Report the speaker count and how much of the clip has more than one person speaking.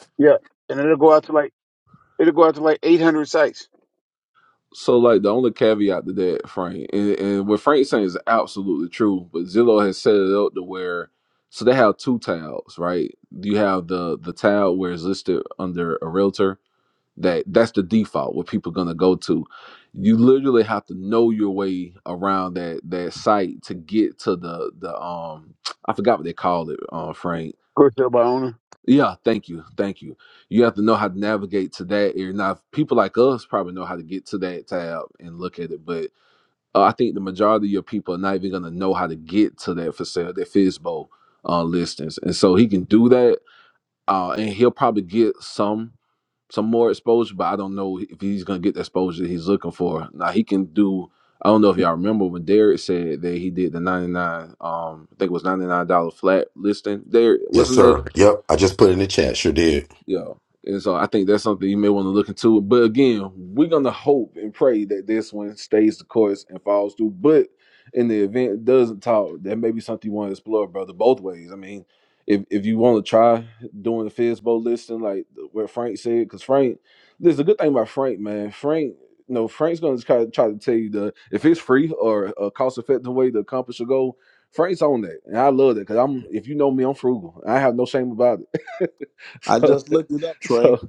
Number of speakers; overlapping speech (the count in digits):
4, about 1%